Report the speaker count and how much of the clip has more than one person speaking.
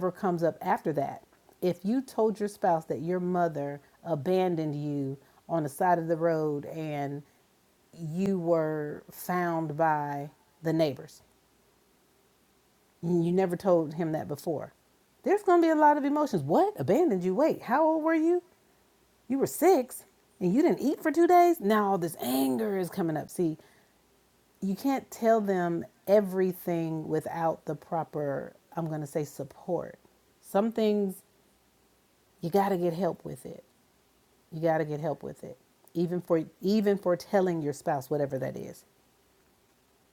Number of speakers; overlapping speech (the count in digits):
1, no overlap